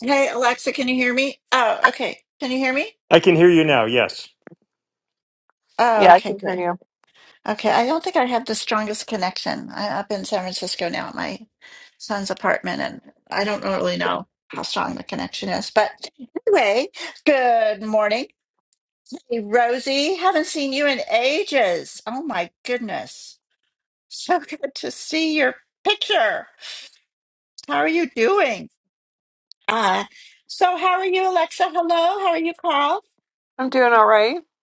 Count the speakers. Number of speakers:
3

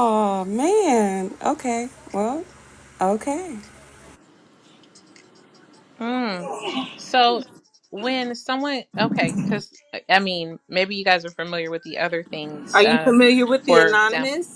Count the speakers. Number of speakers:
3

